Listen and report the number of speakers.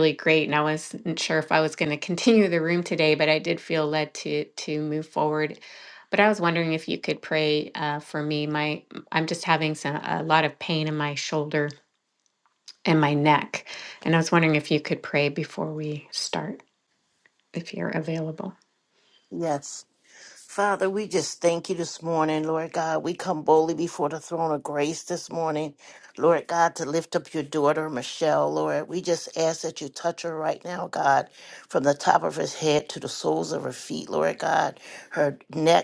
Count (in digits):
2